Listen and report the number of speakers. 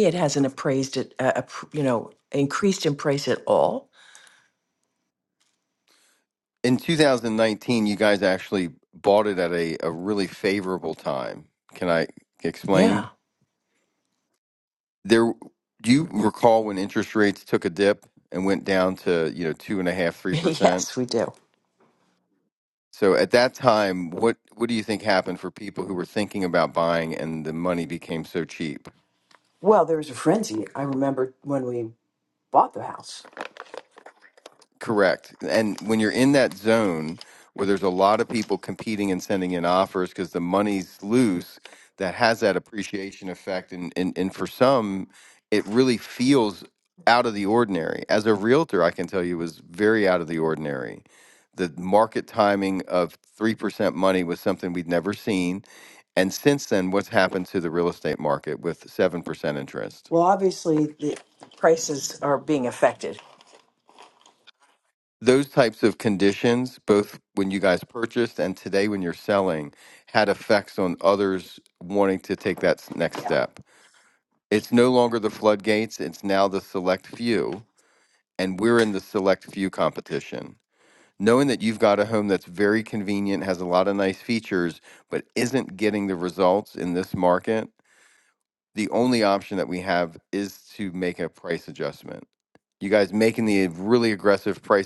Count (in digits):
2